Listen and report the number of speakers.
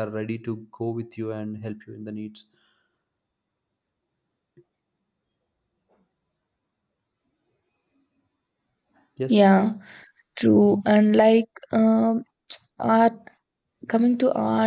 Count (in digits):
2